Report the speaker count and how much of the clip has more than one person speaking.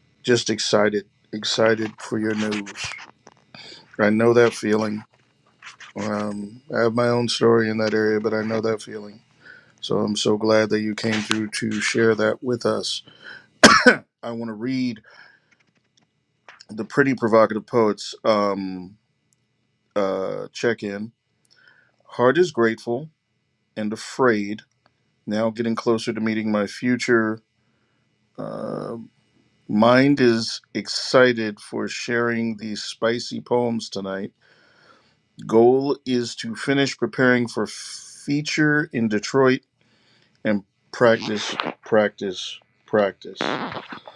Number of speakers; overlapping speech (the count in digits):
1, no overlap